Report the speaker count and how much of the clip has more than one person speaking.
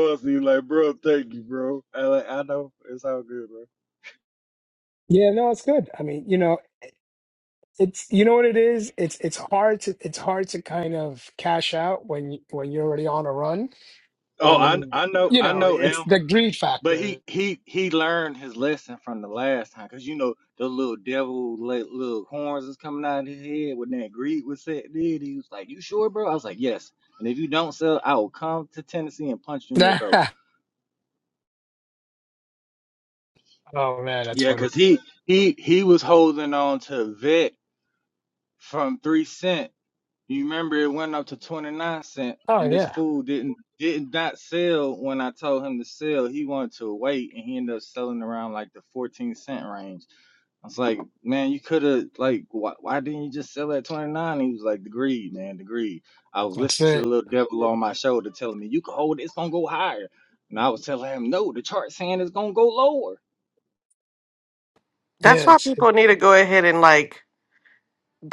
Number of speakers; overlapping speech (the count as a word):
three, about 6%